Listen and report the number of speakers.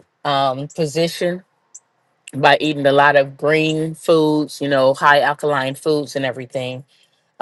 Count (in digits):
1